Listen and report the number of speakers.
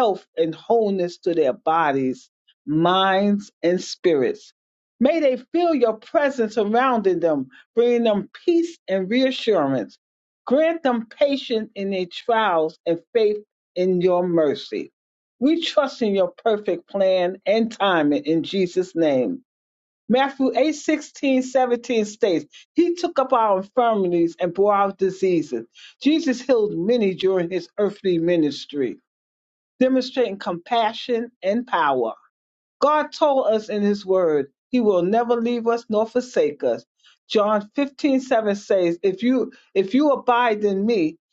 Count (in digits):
1